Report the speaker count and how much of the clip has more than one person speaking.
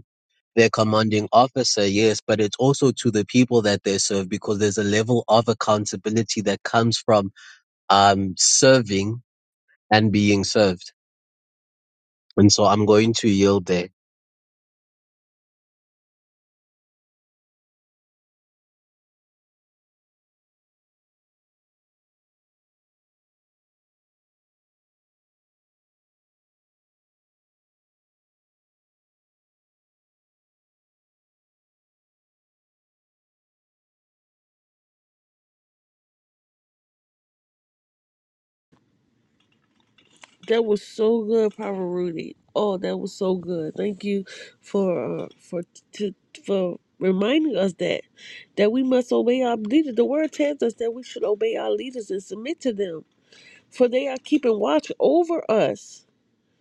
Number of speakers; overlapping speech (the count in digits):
2, no overlap